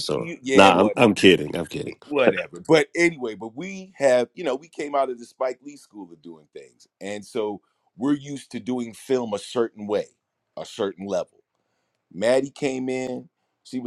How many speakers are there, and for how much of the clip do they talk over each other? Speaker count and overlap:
2, about 8%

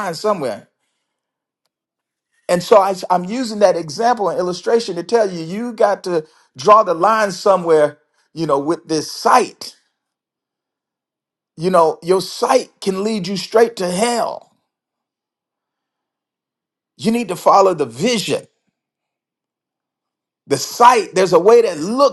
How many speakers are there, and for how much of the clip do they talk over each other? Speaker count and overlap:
1, no overlap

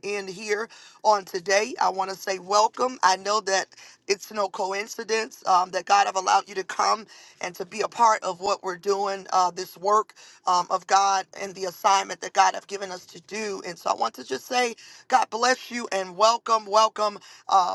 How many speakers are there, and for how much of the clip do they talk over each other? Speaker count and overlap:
1, no overlap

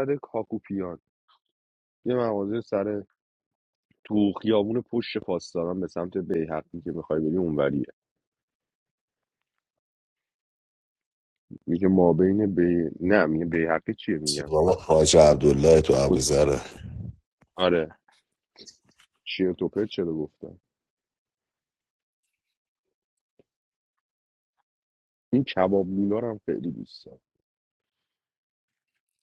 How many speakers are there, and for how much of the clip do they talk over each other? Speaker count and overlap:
2, about 1%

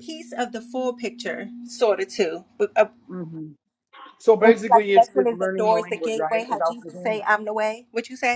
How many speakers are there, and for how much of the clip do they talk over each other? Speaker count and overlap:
2, about 33%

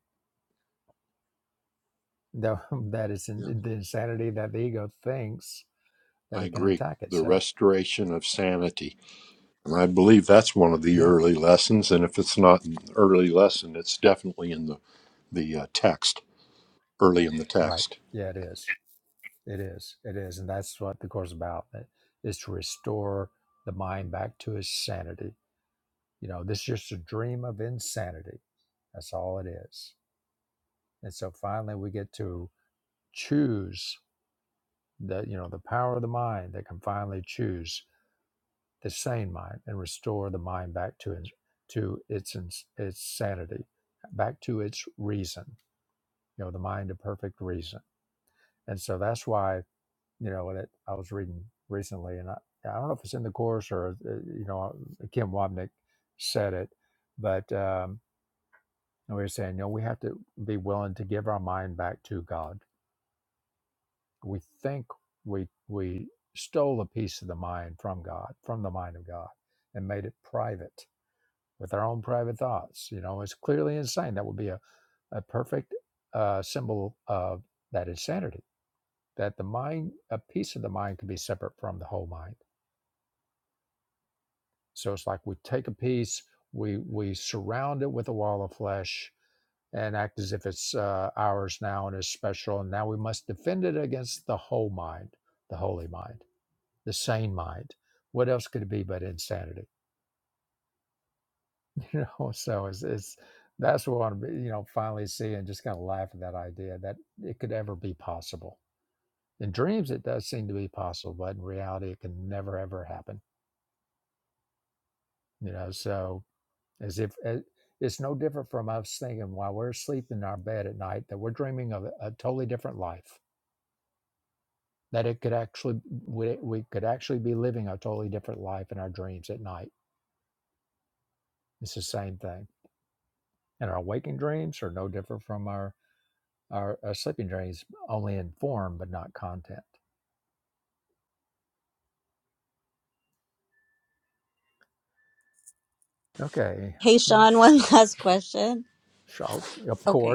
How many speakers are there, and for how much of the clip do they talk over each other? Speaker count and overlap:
3, about 1%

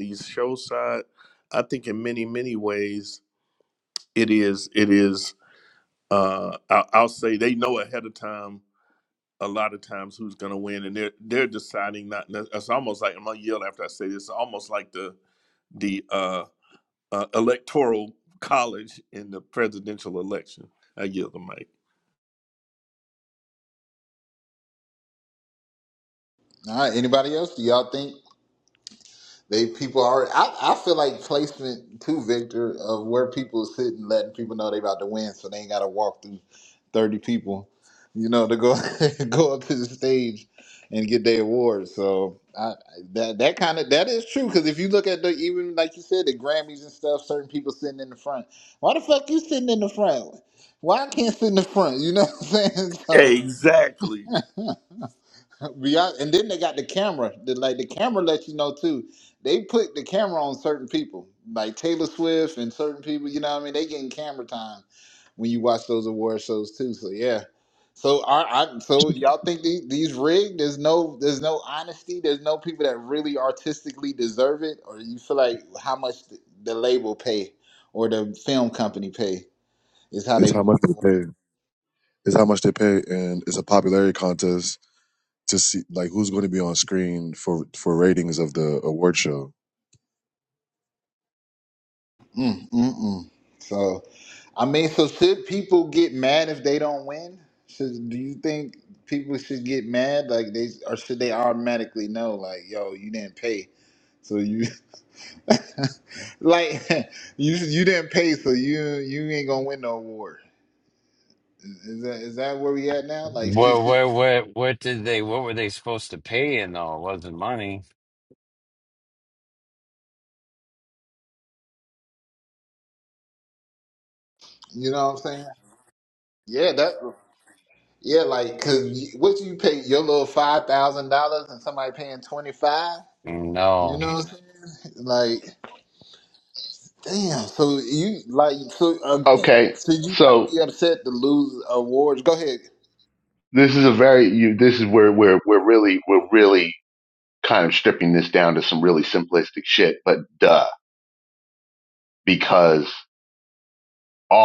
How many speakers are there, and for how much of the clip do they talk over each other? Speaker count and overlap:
5, about 1%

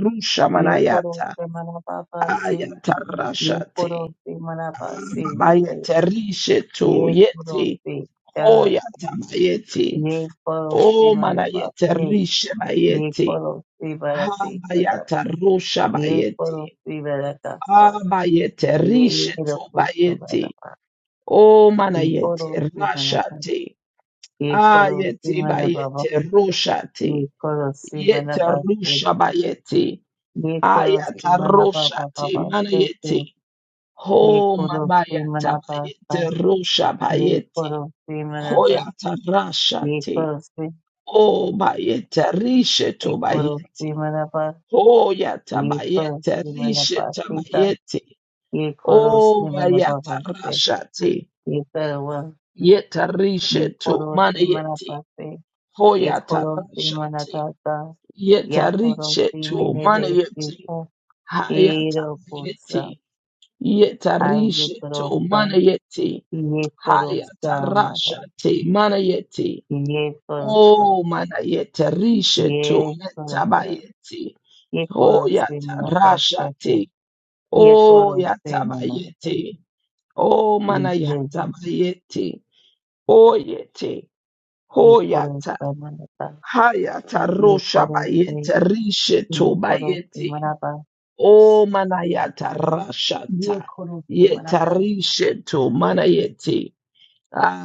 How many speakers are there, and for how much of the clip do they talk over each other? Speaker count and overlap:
2, about 41%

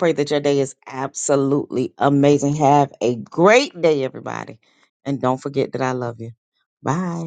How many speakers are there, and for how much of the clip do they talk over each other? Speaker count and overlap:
1, no overlap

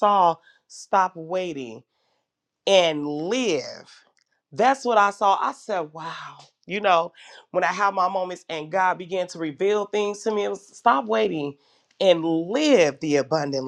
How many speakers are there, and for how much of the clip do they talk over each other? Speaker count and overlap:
1, no overlap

